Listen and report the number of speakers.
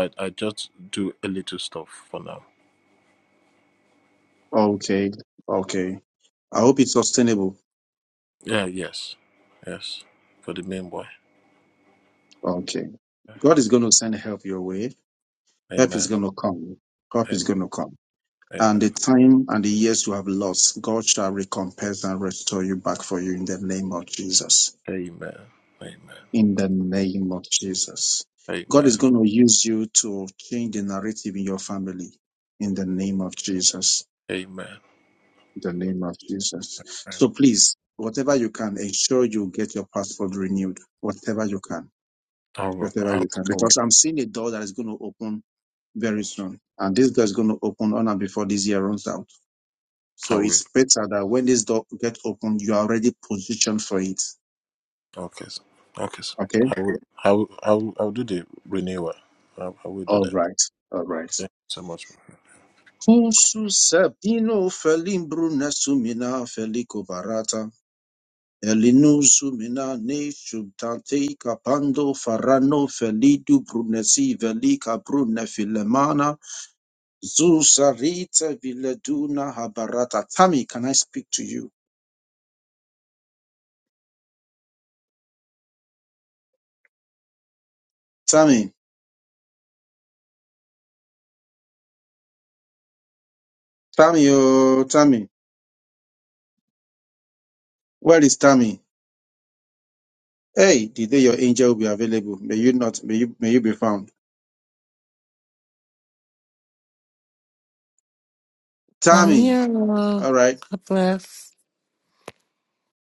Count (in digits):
3